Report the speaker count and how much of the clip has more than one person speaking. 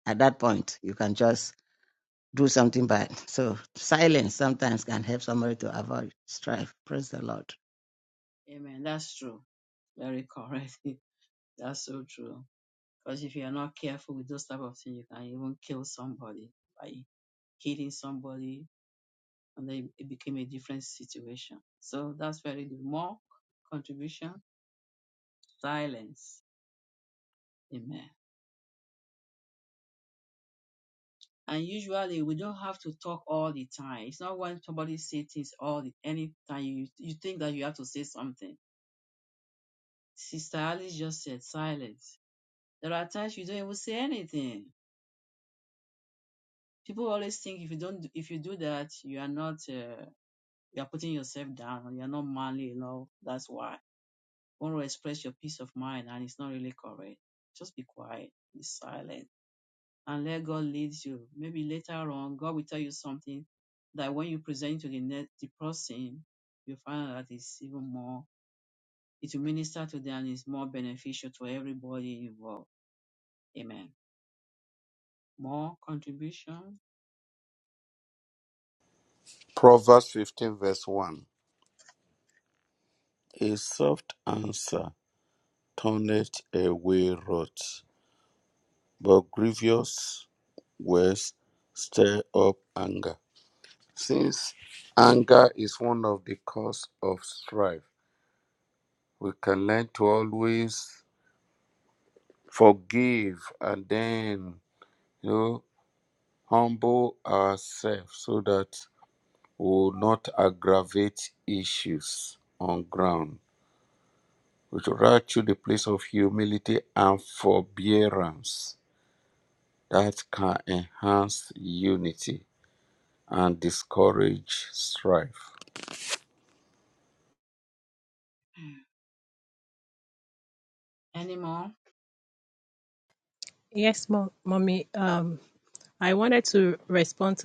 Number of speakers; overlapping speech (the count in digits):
4, no overlap